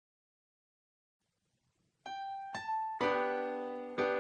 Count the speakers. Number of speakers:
zero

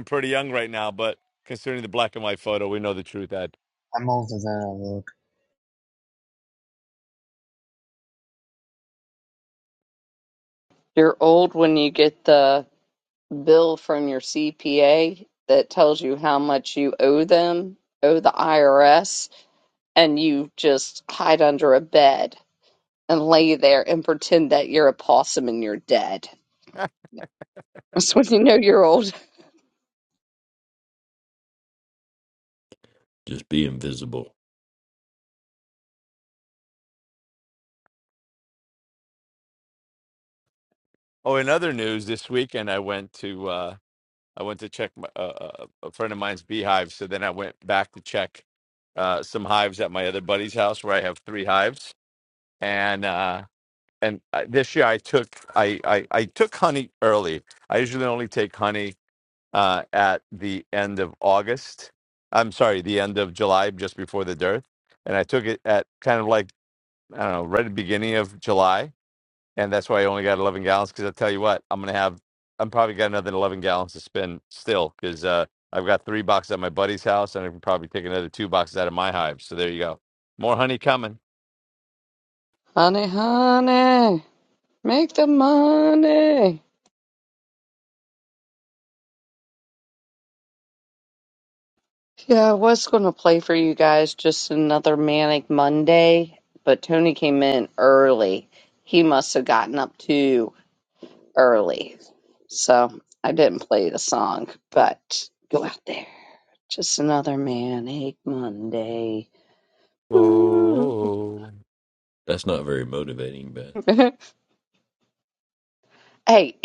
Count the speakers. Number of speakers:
four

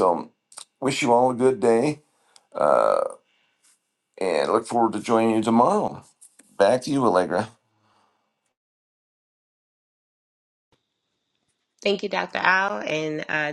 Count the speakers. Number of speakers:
two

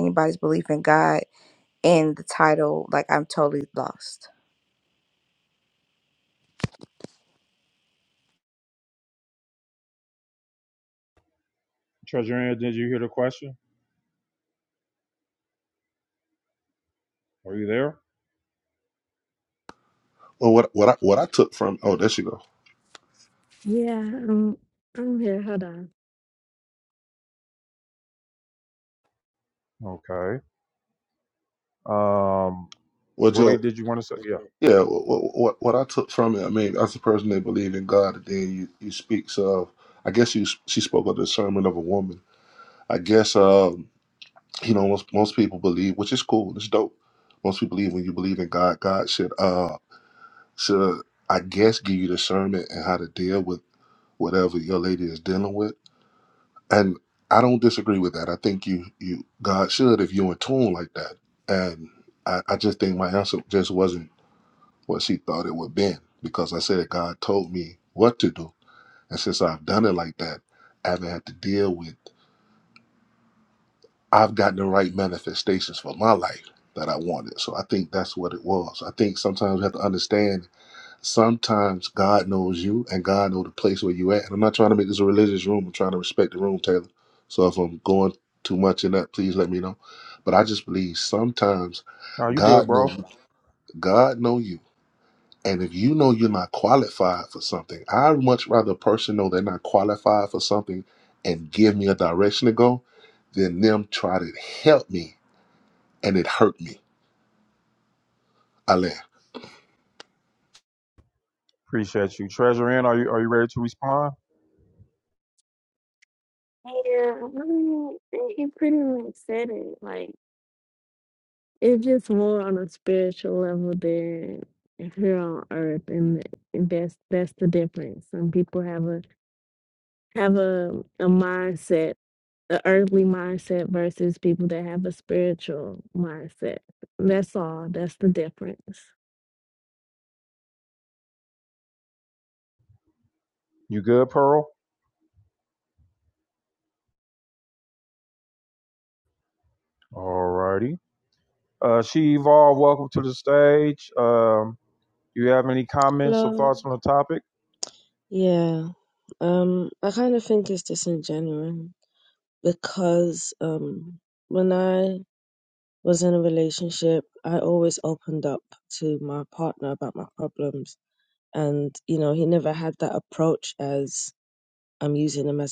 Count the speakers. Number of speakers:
five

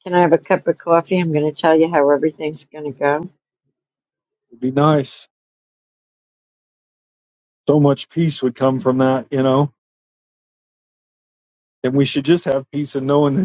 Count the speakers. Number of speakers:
two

